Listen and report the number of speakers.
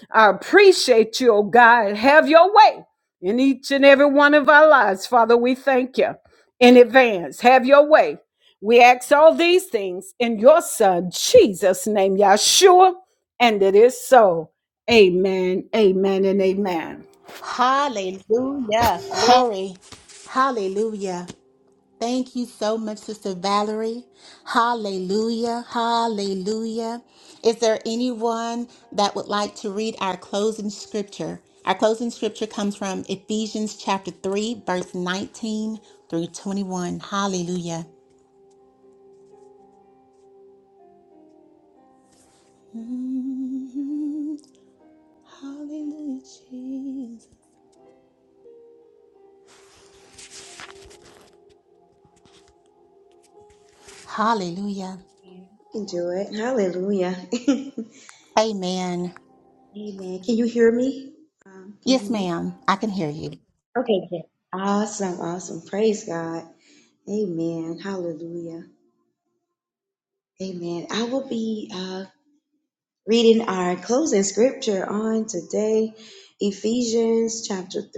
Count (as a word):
three